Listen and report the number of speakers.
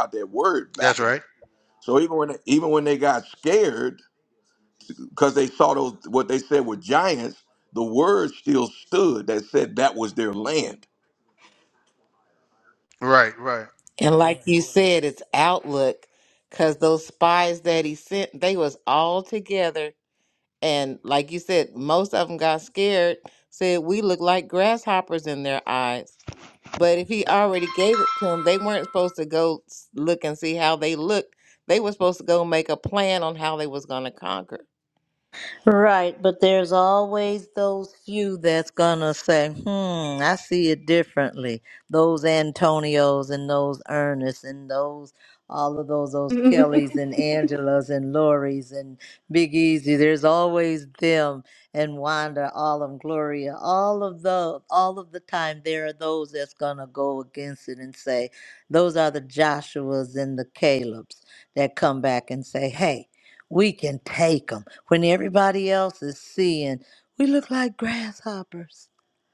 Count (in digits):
4